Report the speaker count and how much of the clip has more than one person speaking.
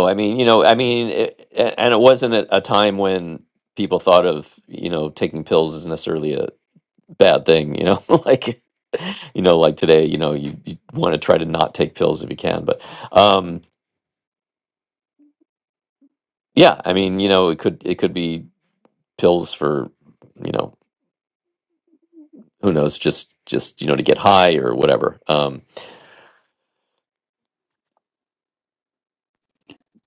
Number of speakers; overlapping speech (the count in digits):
1, no overlap